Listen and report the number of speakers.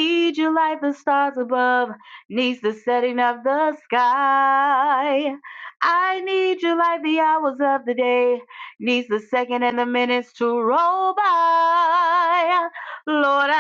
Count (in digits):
1